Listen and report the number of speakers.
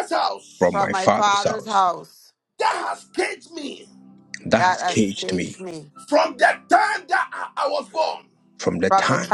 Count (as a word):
three